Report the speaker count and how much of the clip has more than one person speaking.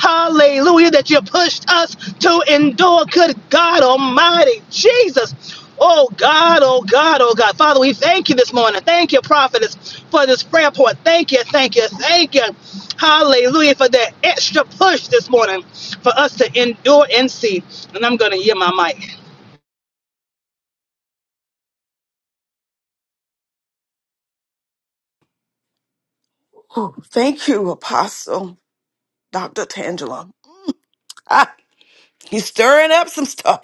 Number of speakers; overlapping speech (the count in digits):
2, no overlap